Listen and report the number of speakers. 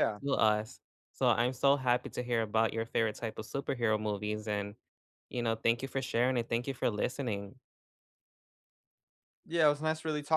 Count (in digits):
2